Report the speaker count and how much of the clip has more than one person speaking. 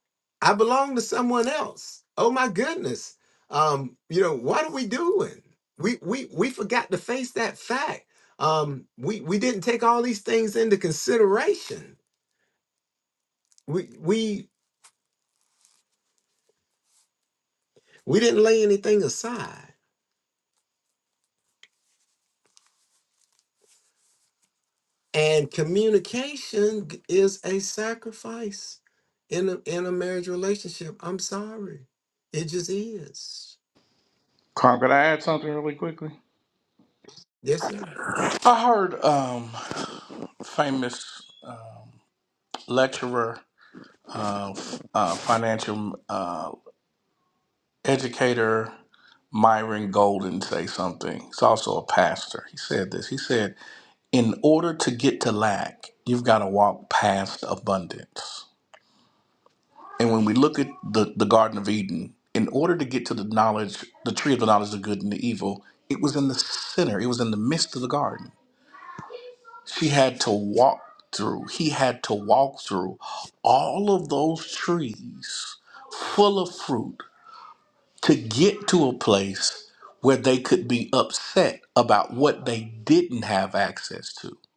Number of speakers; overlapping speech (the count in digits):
2, no overlap